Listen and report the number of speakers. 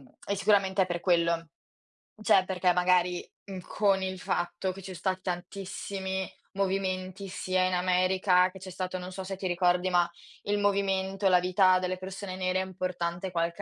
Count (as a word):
one